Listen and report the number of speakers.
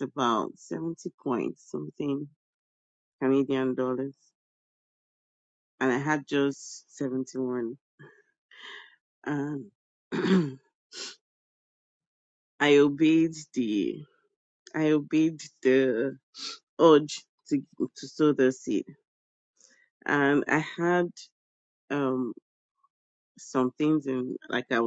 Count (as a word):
one